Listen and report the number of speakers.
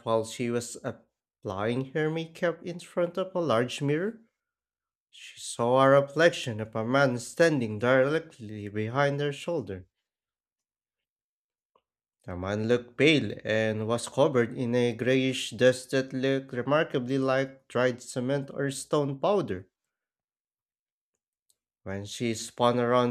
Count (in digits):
1